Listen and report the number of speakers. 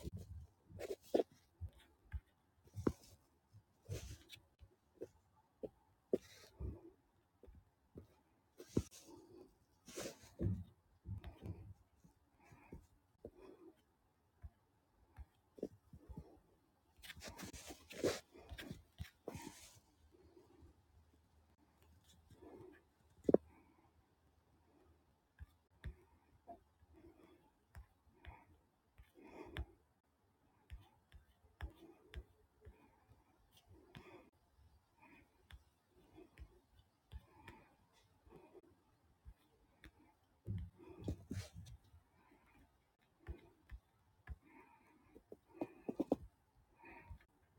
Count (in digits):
0